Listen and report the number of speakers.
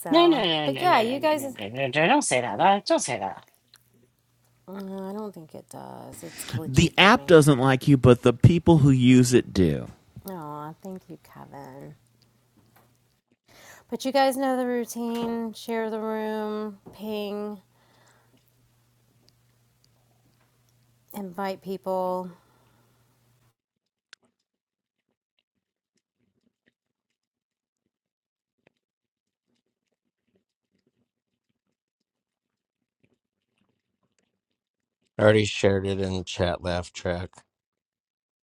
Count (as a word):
four